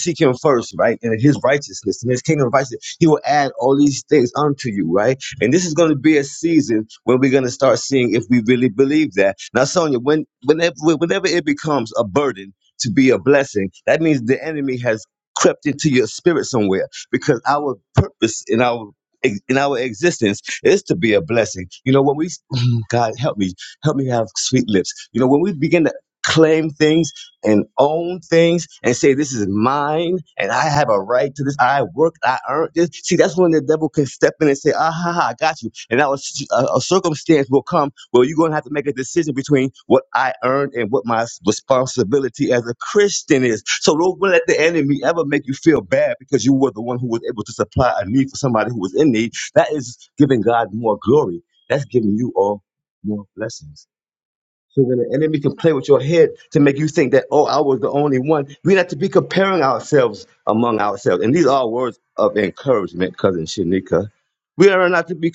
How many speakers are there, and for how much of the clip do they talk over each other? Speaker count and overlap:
one, no overlap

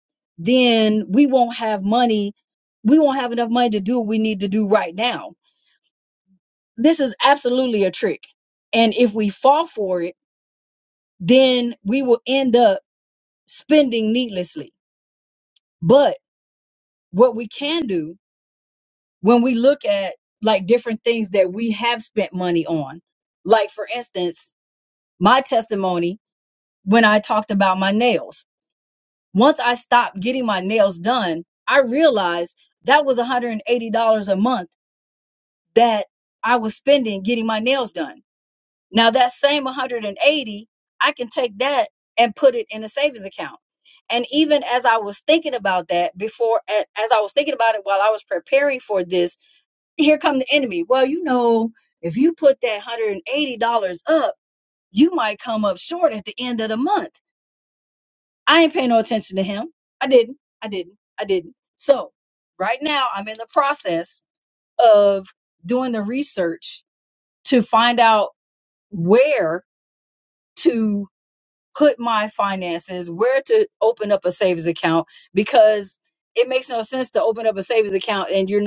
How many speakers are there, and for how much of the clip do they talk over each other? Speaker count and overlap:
one, no overlap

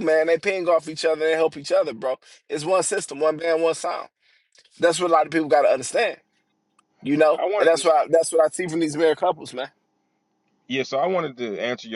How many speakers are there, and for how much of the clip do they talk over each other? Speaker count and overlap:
two, about 5%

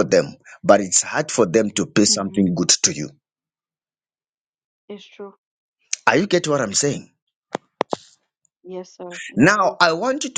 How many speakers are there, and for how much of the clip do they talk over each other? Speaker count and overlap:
two, about 8%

